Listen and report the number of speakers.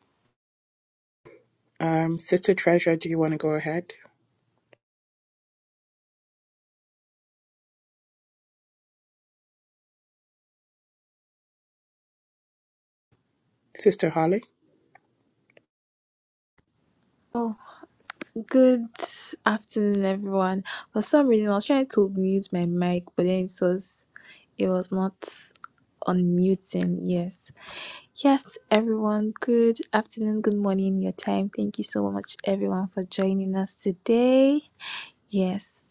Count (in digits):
2